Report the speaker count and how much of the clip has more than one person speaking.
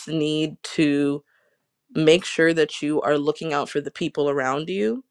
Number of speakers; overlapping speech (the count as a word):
one, no overlap